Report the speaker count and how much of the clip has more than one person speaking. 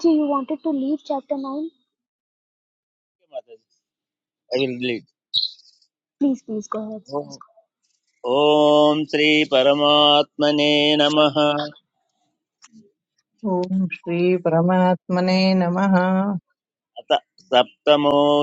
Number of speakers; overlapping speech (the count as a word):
three, no overlap